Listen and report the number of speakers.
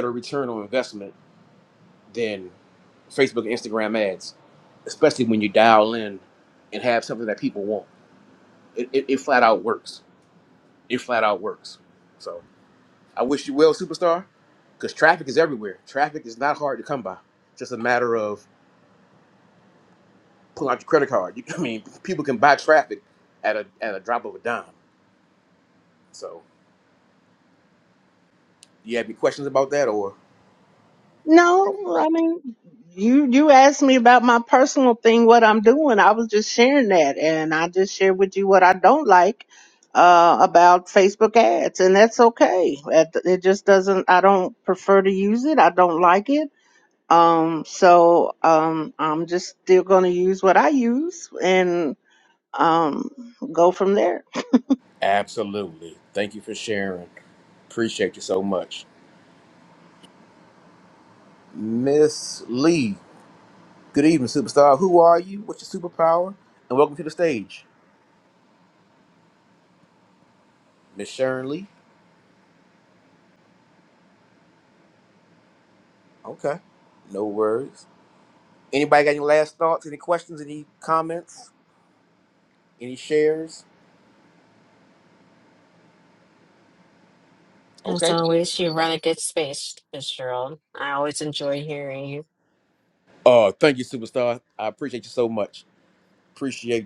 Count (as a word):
three